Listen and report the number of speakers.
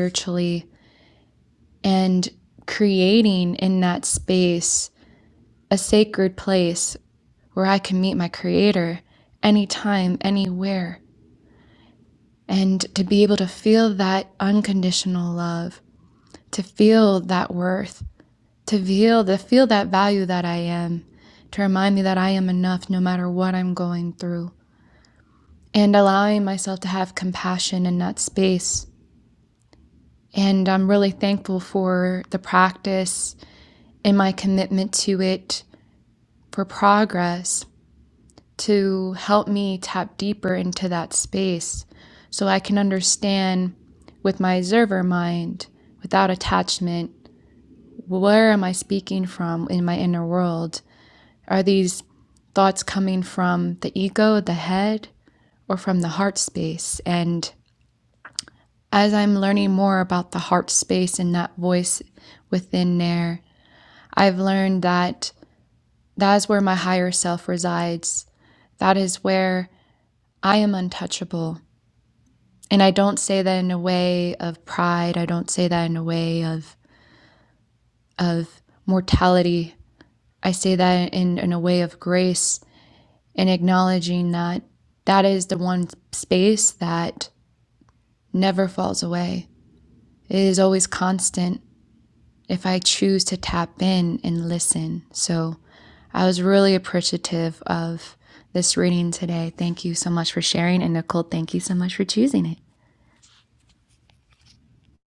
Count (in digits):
1